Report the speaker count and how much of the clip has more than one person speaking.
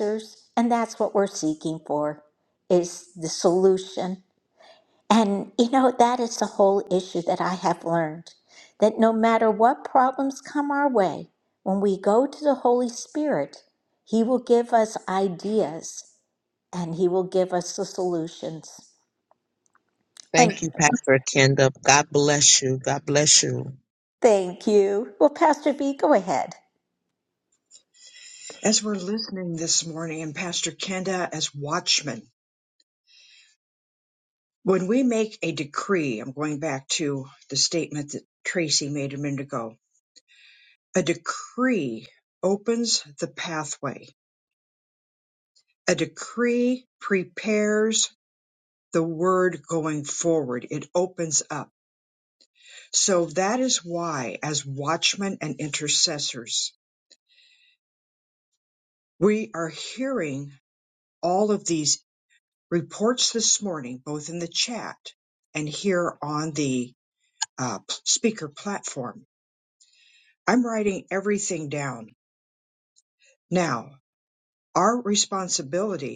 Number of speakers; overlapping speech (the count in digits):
3, under 1%